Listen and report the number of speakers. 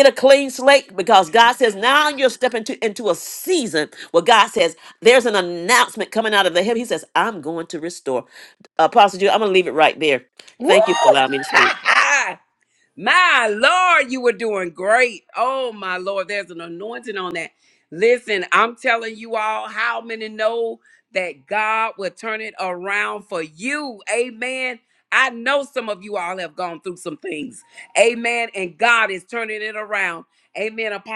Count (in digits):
2